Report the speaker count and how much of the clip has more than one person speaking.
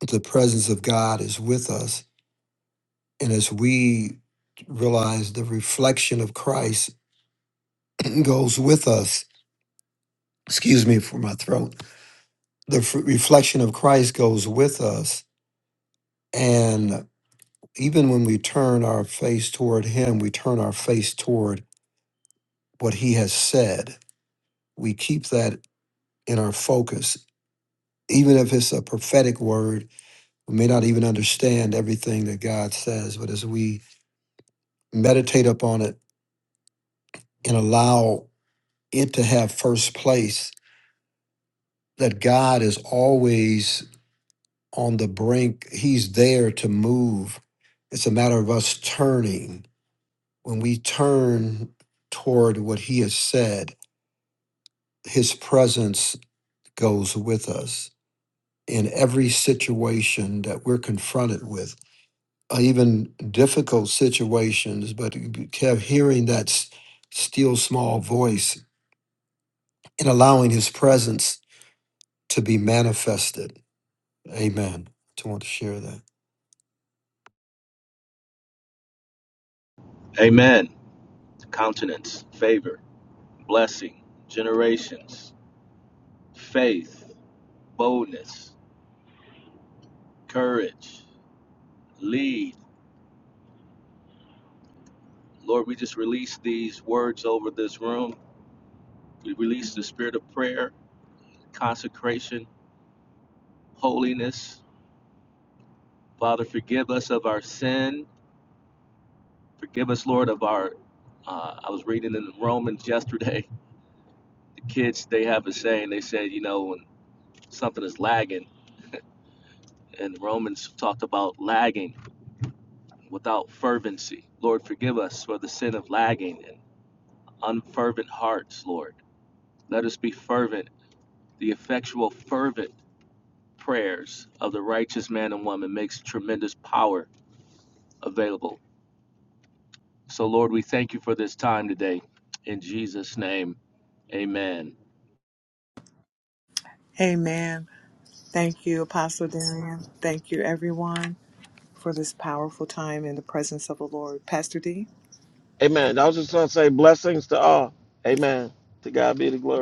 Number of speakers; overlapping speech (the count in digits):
4, no overlap